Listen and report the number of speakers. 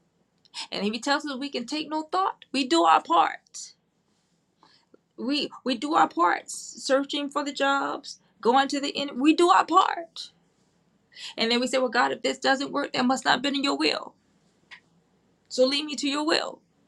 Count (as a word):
one